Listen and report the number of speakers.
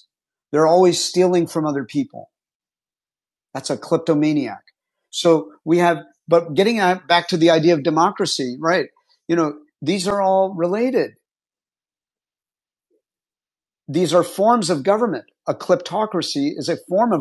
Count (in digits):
1